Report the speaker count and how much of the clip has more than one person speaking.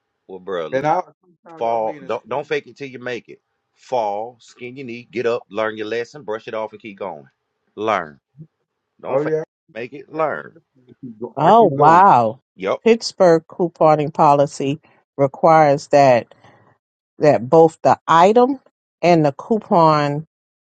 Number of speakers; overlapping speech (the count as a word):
three, about 9%